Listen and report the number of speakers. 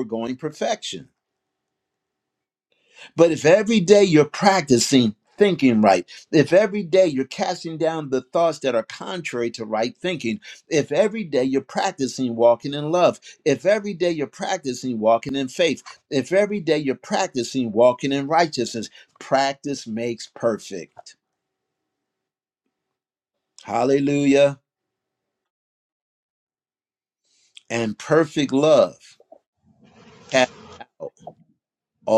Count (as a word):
one